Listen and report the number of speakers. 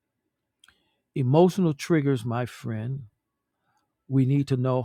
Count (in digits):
1